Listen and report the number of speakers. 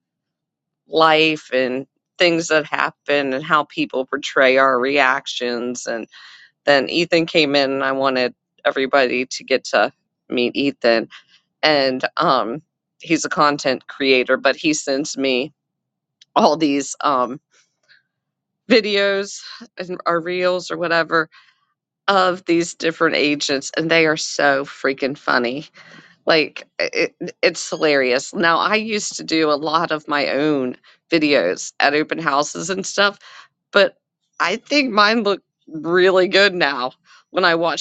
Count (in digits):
1